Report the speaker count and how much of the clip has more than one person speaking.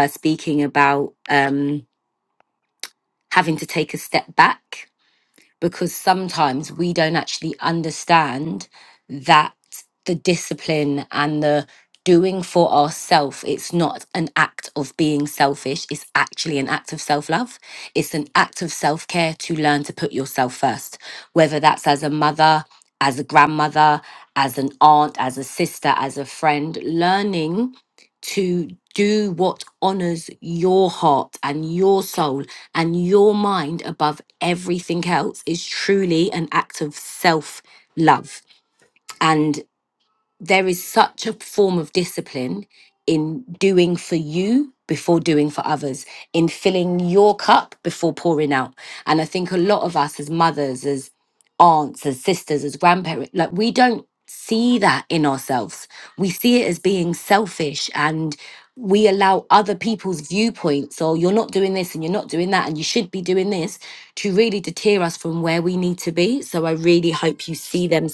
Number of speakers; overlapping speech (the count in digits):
1, no overlap